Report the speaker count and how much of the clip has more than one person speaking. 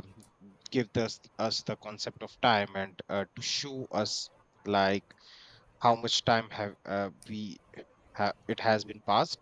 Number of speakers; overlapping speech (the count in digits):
1, no overlap